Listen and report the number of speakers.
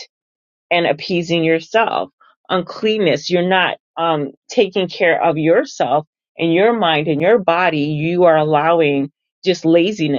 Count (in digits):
1